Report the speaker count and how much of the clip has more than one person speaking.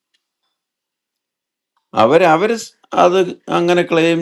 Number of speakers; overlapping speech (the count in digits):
1, no overlap